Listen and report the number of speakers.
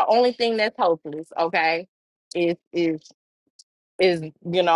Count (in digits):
1